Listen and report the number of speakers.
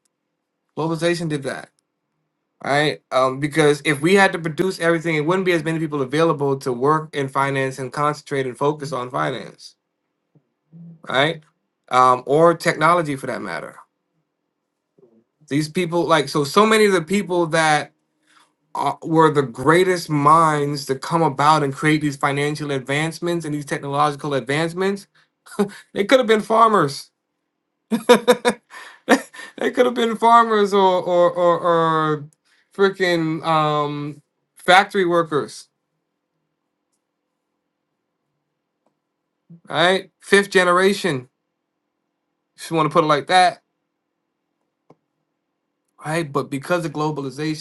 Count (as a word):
one